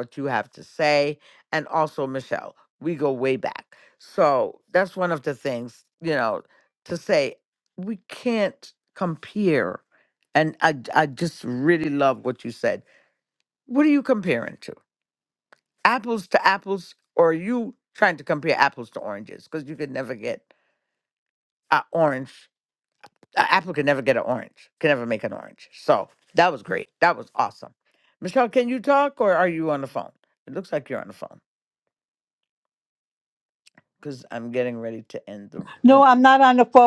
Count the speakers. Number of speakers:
2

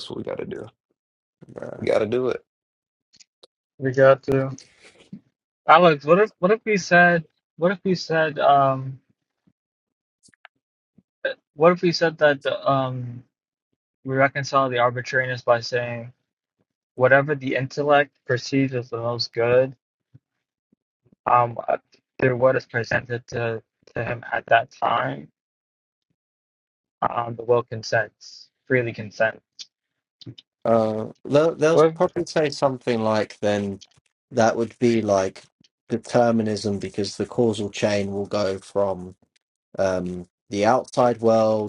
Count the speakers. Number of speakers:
3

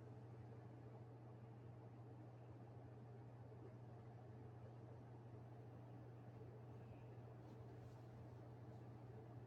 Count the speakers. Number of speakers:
0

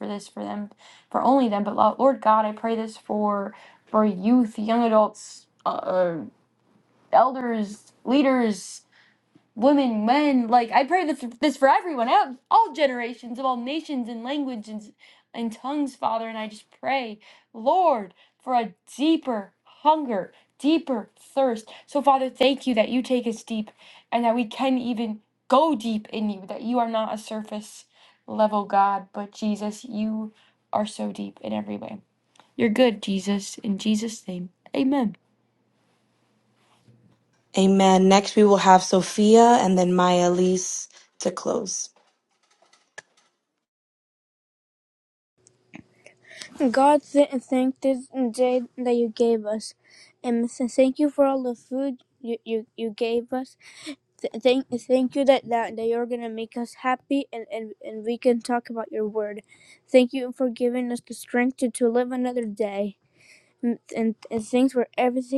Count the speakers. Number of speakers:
3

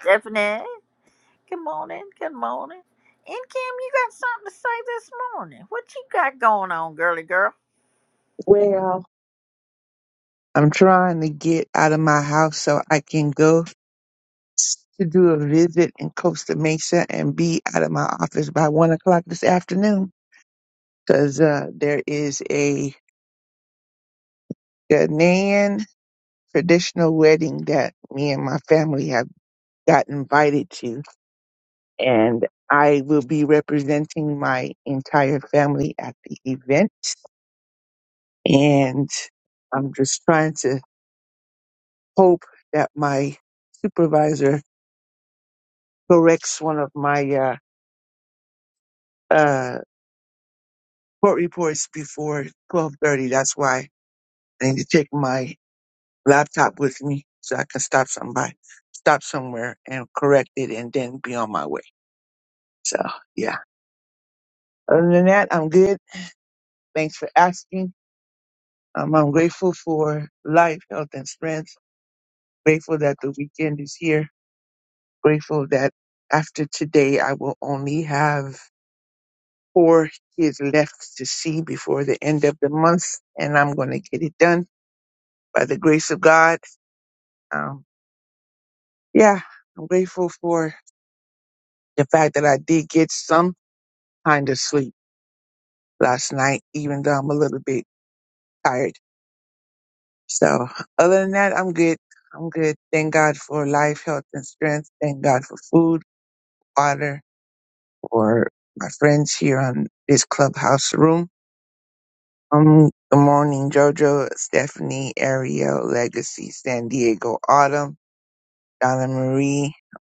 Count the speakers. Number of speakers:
2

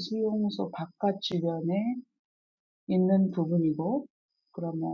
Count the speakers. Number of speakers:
1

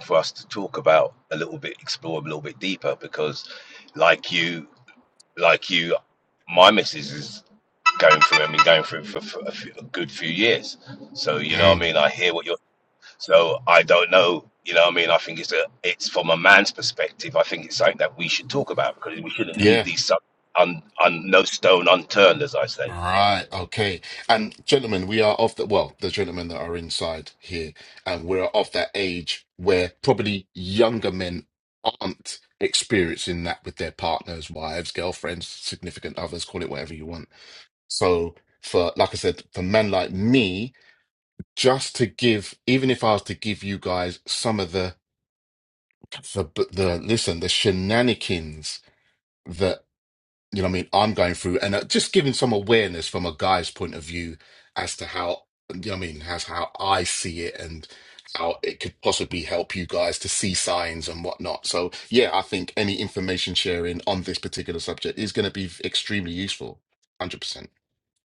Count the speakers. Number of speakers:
2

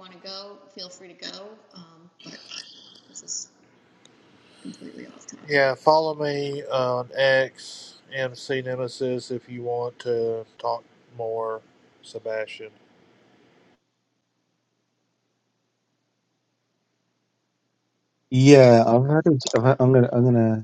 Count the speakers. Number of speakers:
3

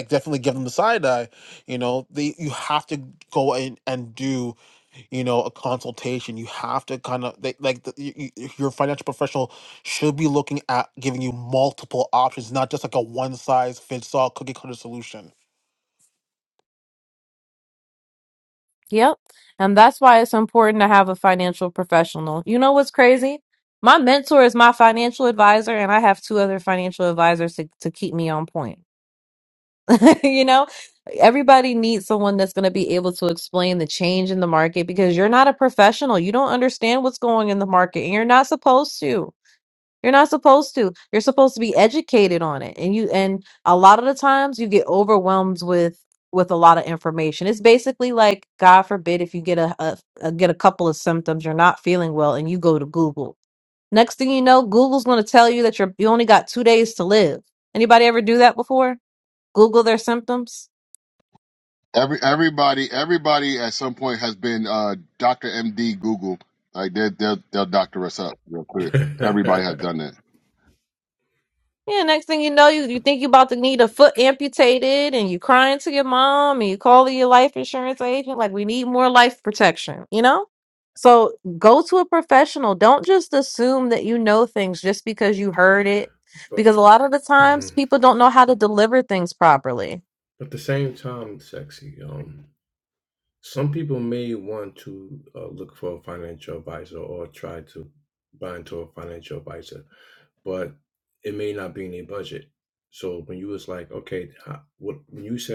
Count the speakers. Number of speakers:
4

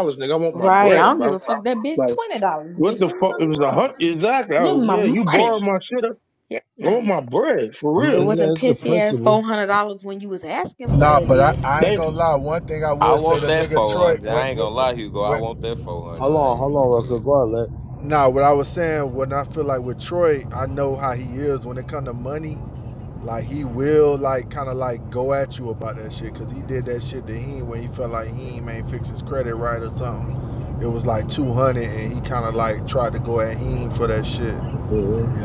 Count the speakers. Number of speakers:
5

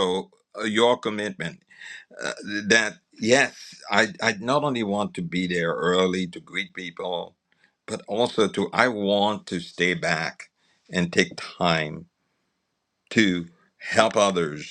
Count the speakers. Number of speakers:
1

